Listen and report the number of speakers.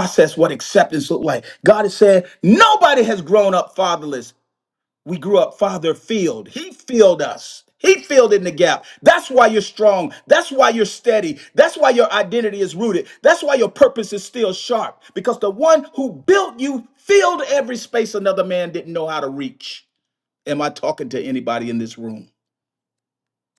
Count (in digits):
1